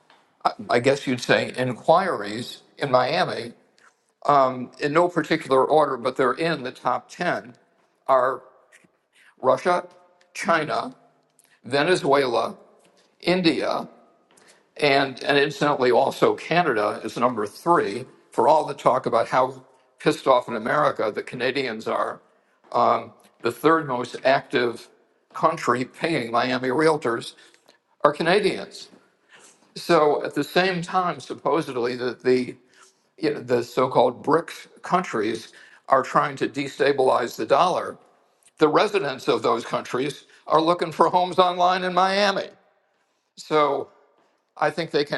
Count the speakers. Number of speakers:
one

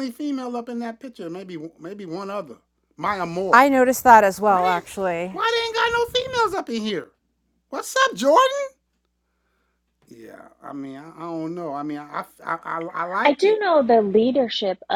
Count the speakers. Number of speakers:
three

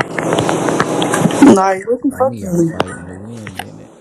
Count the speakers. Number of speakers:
two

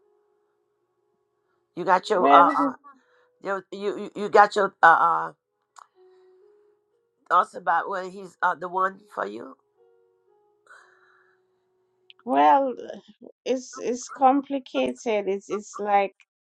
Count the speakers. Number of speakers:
two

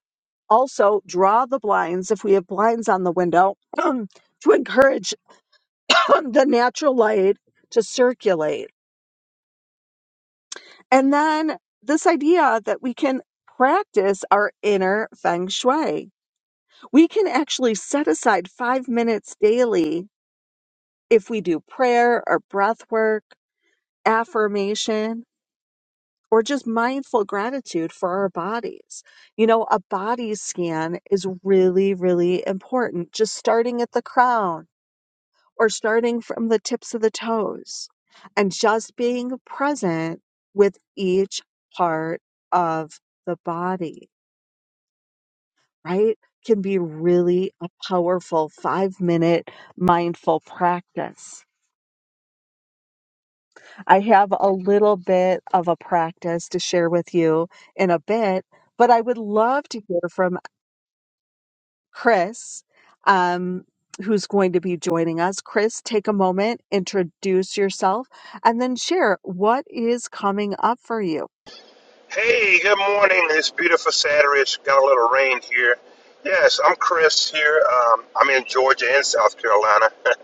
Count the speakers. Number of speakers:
two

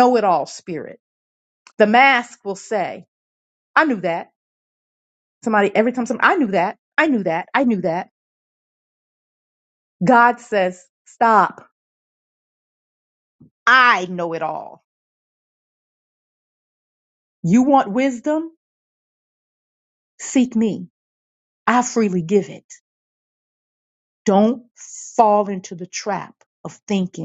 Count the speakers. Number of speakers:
one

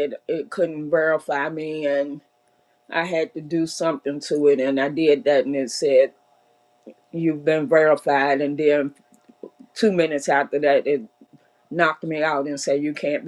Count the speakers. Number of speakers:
one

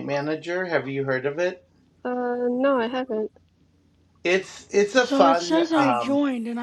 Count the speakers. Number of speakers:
three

